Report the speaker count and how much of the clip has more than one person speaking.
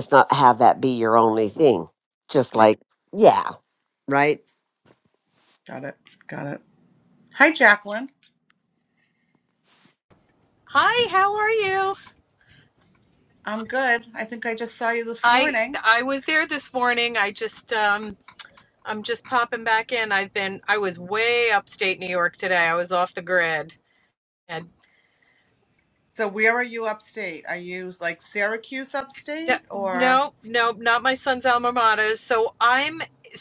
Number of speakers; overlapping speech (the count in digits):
3, about 4%